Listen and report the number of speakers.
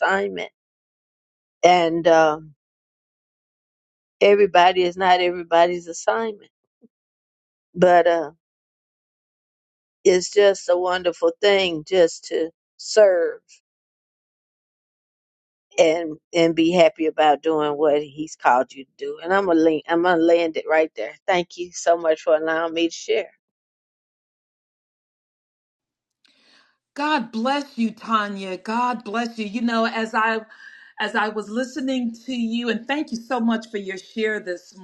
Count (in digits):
2